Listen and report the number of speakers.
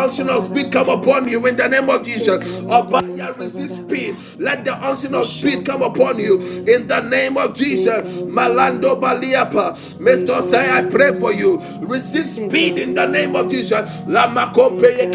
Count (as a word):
two